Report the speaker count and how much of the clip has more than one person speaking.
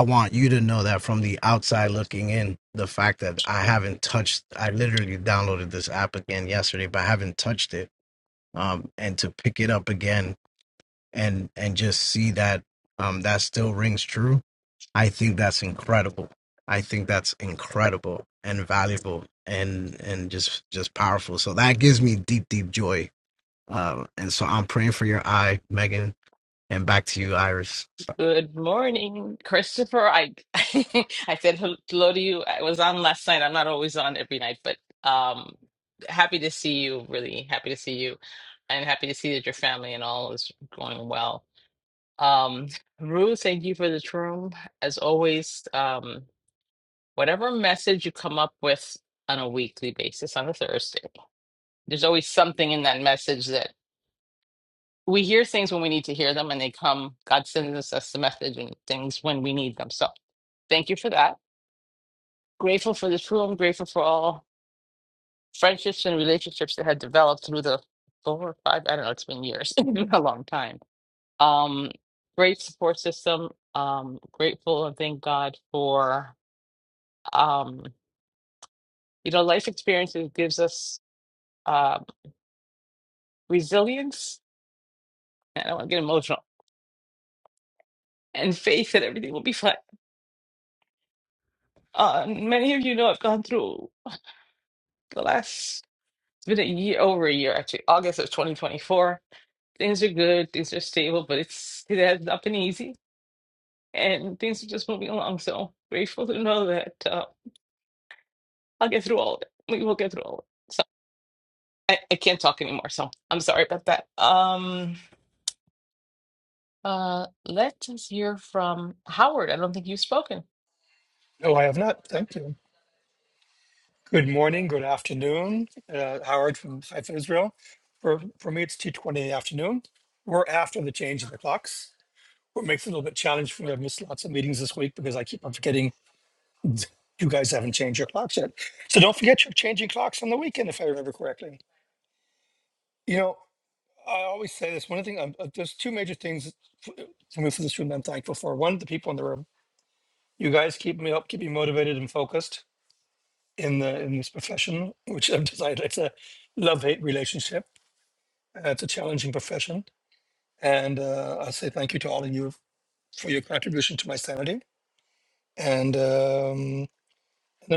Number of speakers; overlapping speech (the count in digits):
3, no overlap